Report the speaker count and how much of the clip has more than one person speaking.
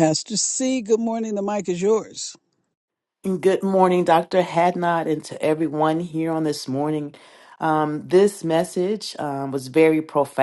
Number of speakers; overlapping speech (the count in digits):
2, no overlap